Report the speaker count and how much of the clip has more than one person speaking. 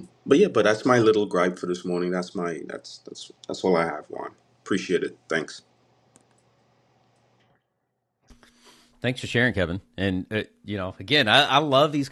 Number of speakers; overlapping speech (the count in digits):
2, no overlap